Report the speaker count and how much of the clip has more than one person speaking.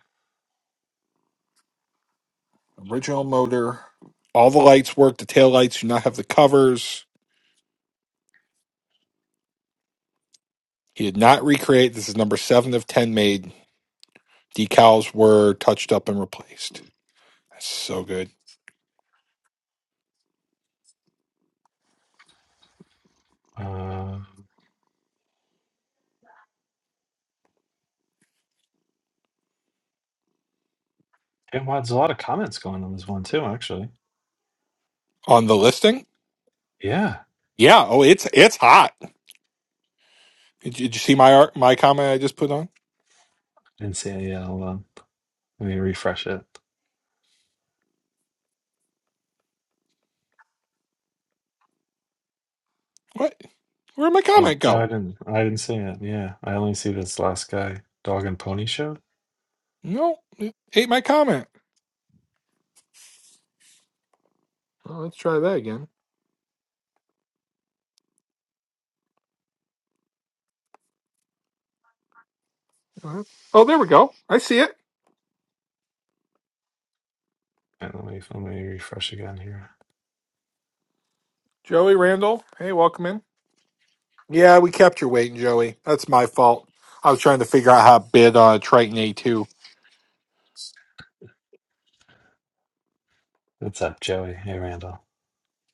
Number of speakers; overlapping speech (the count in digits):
2, about 1%